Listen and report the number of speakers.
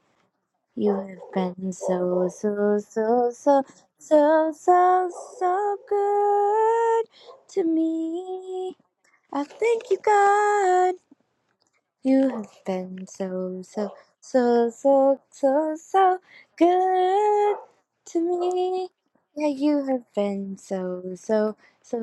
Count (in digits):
1